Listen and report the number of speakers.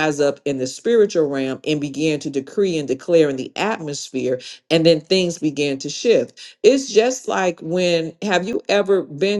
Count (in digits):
1